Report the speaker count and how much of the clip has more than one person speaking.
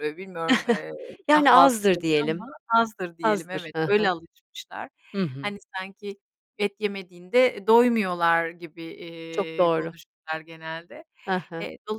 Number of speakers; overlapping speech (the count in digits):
2, about 22%